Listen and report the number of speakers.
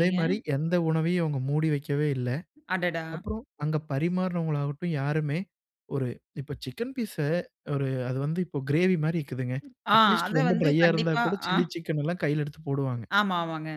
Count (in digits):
2